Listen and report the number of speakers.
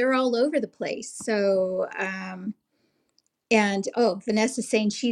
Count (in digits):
1